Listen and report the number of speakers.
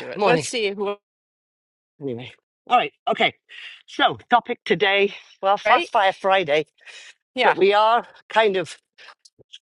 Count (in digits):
2